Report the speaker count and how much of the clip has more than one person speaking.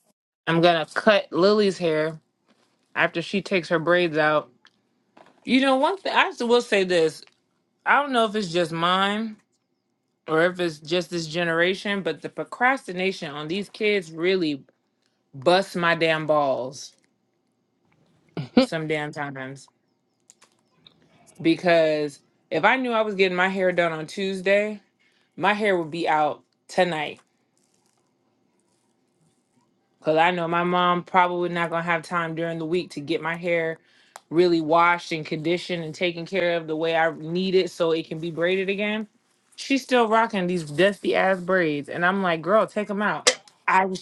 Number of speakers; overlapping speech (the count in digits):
1, no overlap